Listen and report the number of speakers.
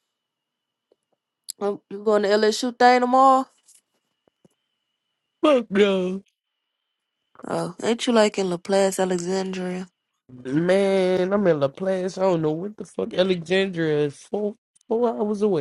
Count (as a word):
two